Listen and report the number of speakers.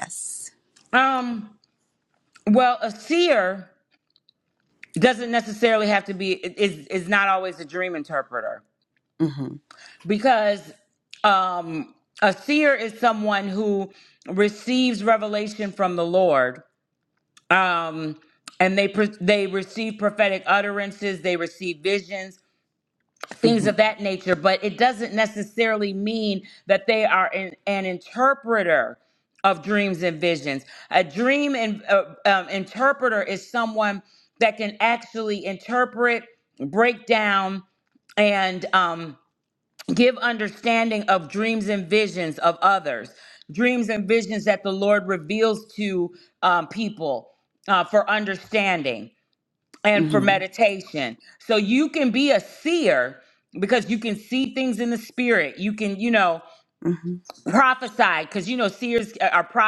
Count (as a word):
two